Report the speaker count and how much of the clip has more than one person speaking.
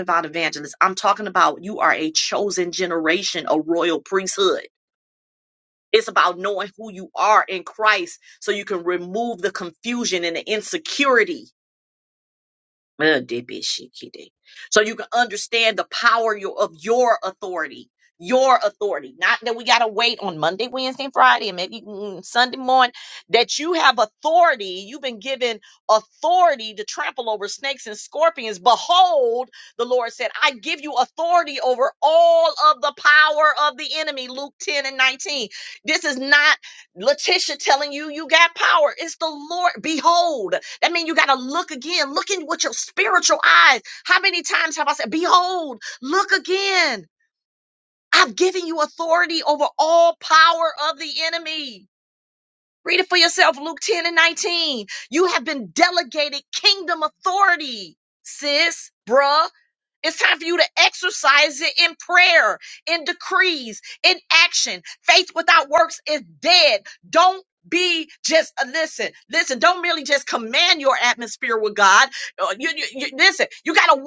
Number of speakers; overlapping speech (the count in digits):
1, no overlap